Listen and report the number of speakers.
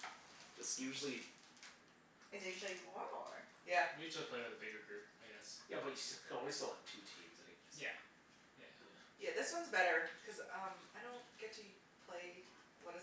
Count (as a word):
four